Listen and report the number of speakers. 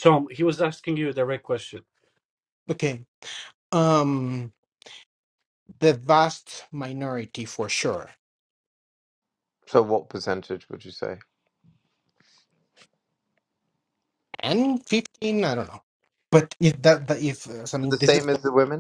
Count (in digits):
3